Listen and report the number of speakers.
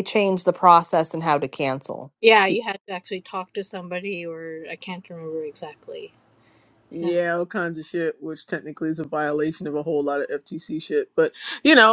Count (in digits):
3